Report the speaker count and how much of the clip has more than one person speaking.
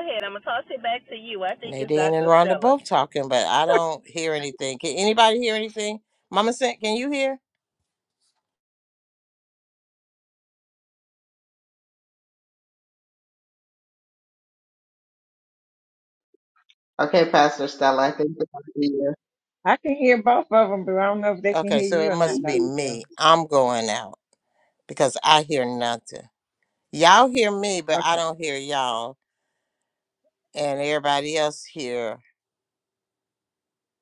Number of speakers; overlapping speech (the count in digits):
4, about 8%